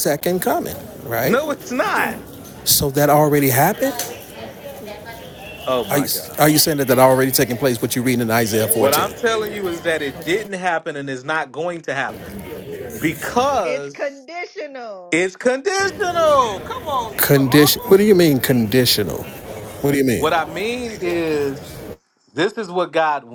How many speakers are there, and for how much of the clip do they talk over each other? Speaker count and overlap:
3, about 11%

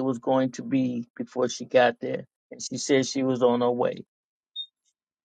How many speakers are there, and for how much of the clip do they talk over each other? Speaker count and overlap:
1, no overlap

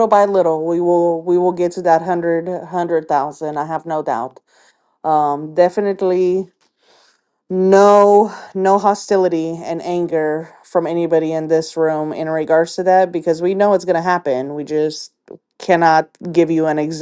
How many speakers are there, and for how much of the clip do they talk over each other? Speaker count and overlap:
1, no overlap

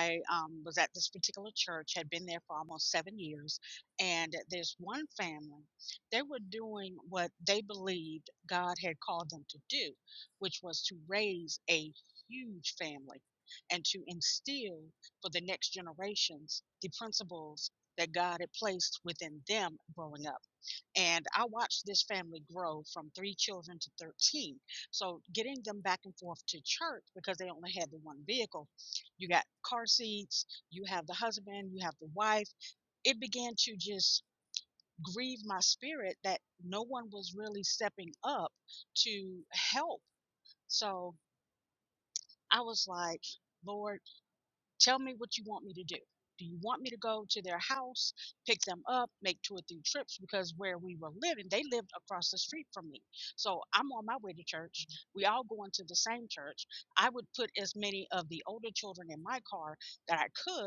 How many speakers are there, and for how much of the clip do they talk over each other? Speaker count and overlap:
1, no overlap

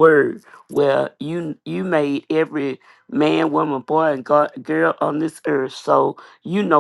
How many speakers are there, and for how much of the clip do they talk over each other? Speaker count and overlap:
1, no overlap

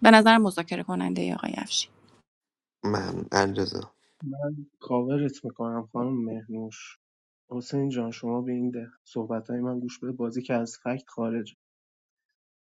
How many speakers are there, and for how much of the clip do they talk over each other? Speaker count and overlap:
3, no overlap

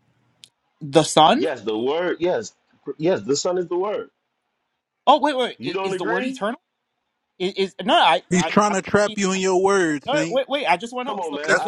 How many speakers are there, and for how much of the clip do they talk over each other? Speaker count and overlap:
3, about 19%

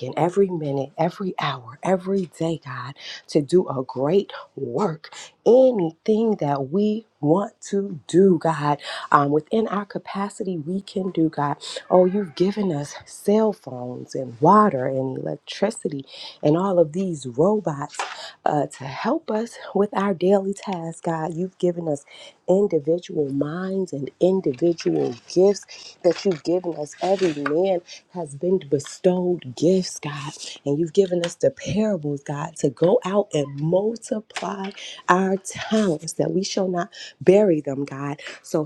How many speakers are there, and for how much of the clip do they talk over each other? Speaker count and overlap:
1, no overlap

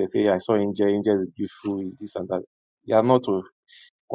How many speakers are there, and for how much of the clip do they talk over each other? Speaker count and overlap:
1, no overlap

